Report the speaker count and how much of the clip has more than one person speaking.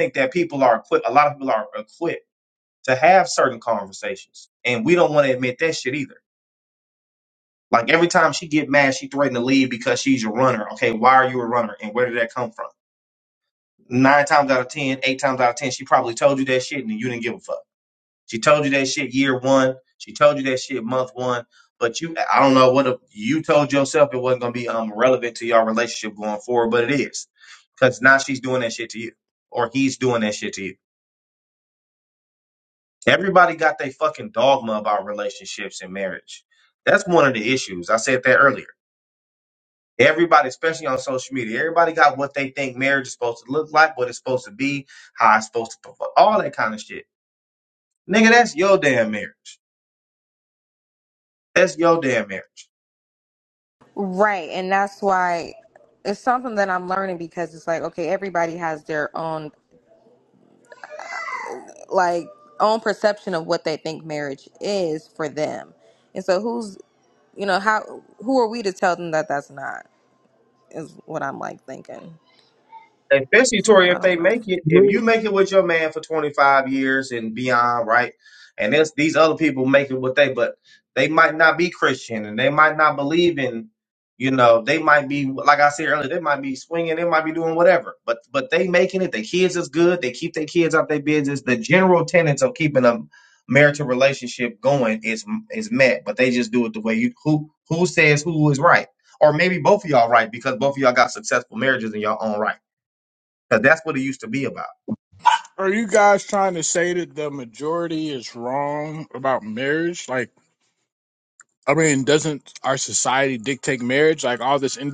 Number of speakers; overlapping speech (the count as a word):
three, about 1%